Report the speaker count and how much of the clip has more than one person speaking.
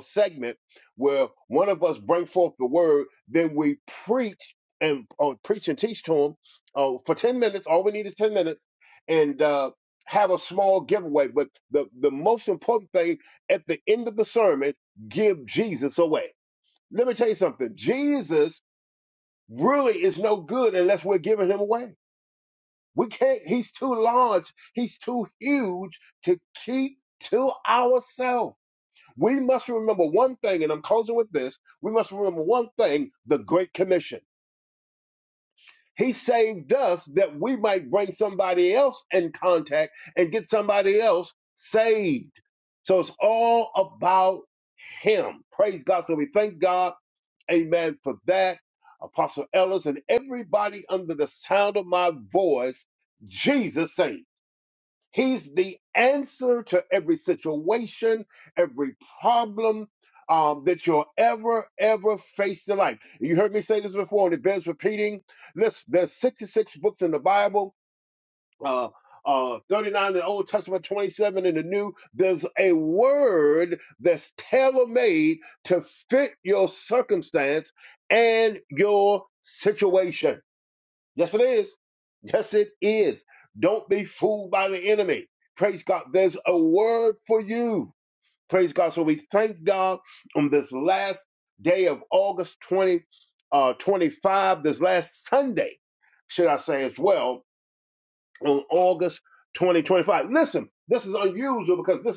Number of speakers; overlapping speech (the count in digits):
1, no overlap